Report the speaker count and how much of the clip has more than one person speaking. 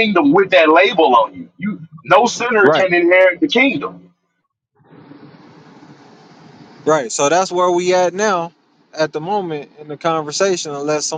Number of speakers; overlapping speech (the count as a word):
two, about 2%